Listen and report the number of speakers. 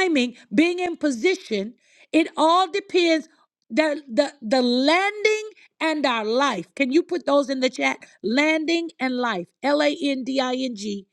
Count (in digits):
1